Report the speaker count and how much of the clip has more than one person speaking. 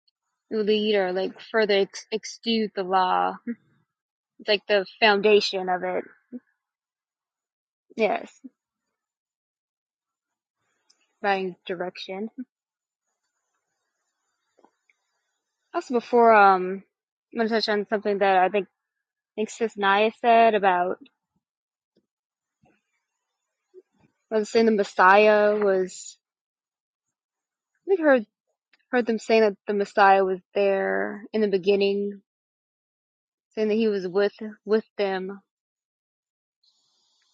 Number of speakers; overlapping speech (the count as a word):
one, no overlap